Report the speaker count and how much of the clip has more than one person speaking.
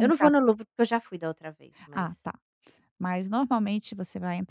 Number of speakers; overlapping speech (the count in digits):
2, about 10%